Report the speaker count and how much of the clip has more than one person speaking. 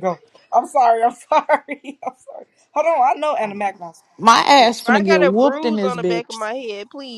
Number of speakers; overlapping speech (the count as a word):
three, about 21%